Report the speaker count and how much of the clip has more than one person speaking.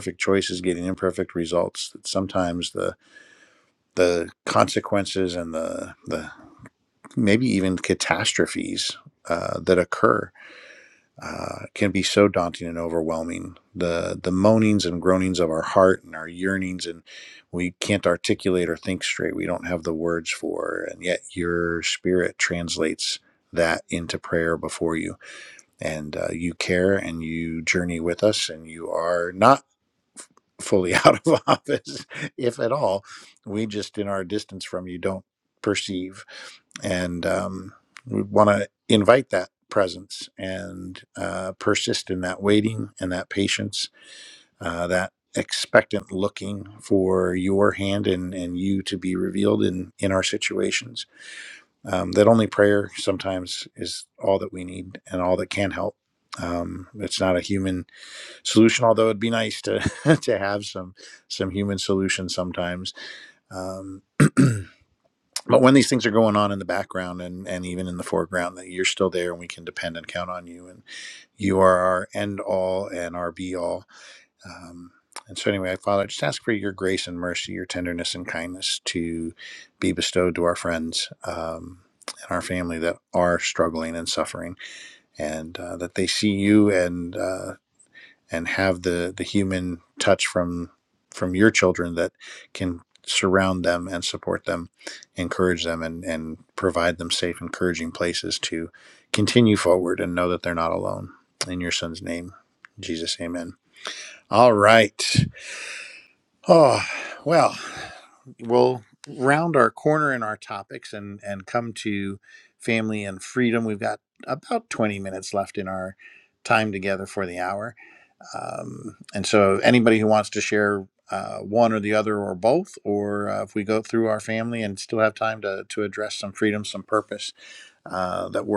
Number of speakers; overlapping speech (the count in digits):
1, no overlap